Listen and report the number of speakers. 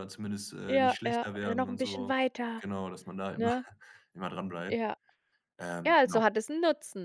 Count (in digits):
2